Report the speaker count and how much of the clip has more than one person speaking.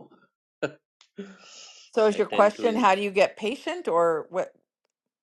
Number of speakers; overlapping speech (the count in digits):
2, about 17%